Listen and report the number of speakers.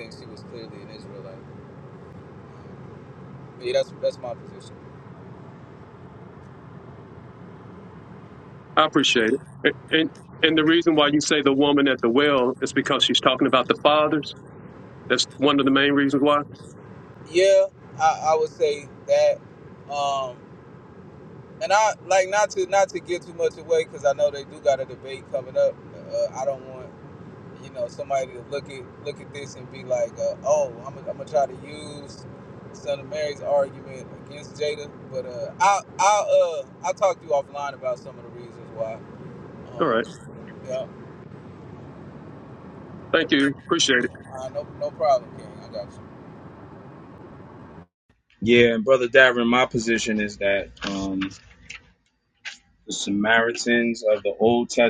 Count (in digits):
3